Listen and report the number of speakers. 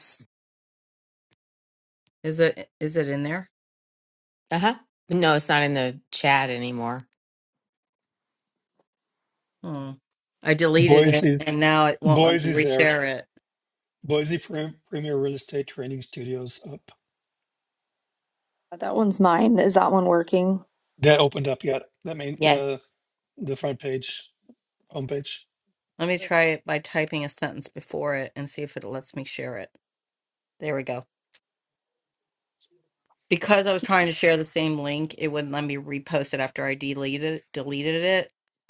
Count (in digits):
4